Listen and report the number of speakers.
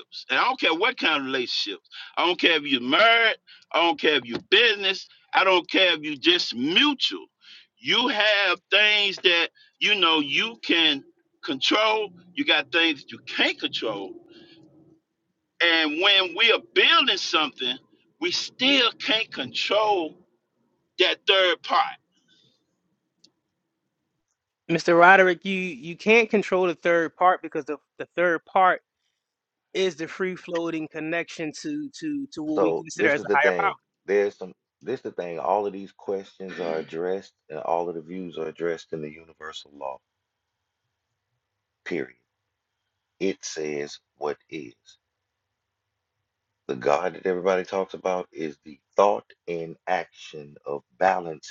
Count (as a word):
three